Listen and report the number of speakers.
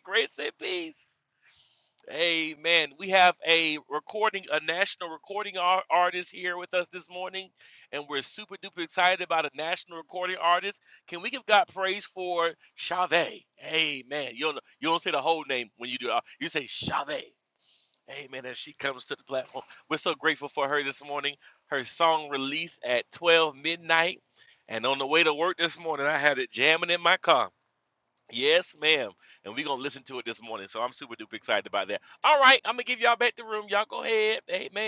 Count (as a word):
one